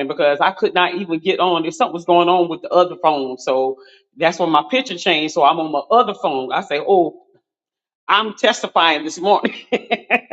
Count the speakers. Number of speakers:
1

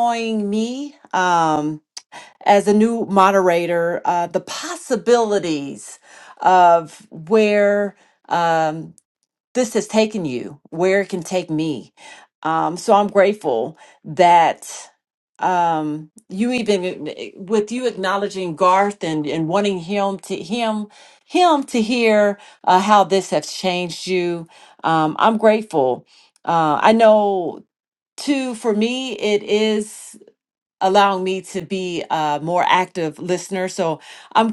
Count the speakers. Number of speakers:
1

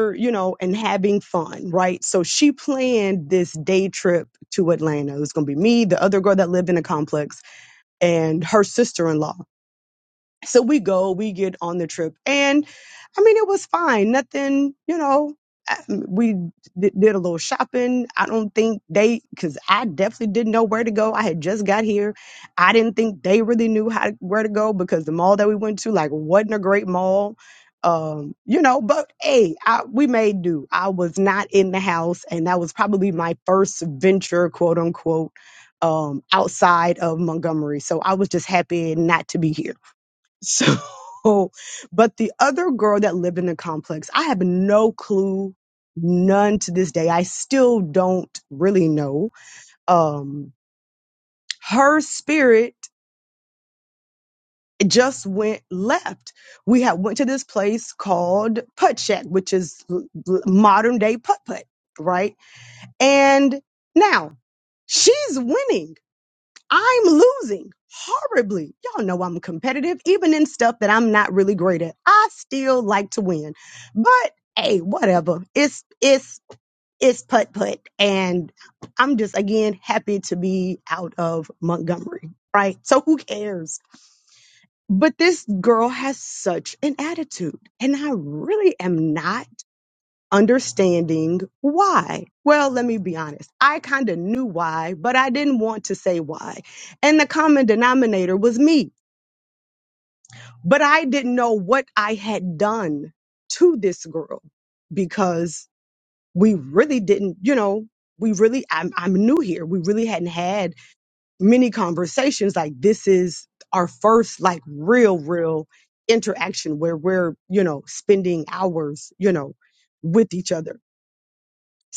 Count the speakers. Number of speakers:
1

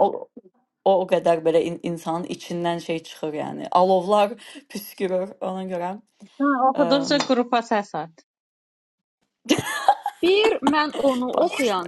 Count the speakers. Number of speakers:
3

